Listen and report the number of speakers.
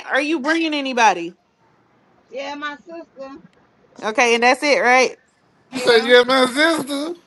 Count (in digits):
3